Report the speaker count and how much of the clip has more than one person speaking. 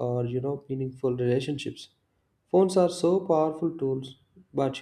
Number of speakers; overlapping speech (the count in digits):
1, no overlap